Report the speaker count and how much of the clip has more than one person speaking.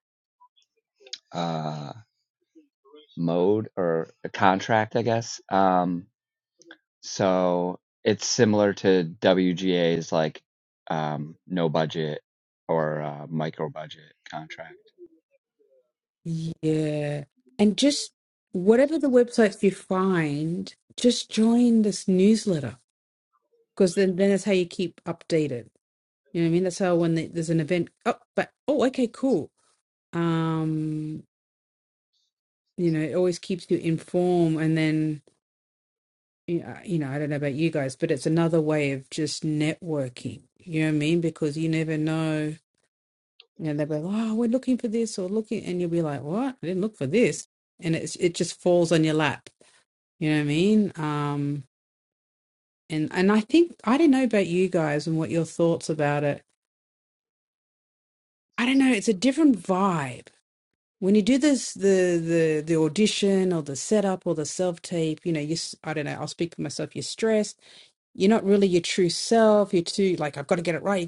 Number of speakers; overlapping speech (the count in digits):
2, no overlap